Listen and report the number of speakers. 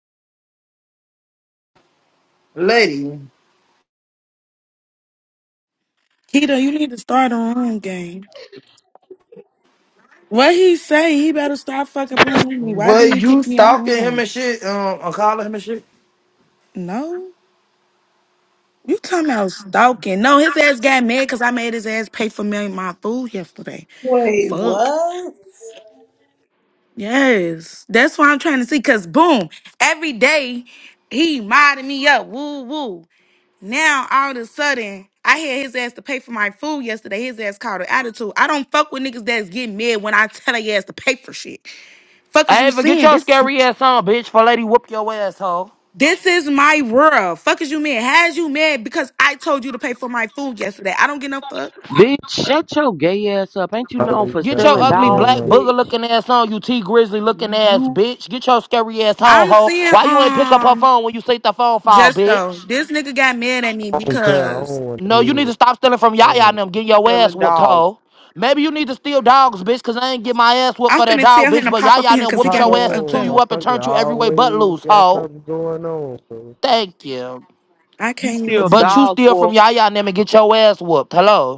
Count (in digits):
5